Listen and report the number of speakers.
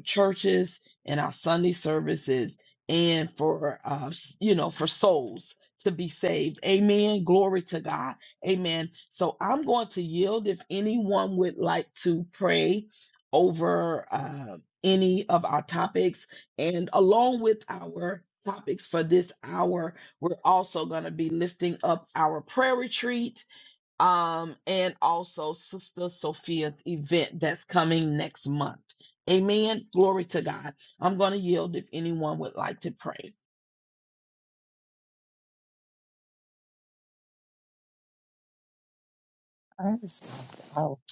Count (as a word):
two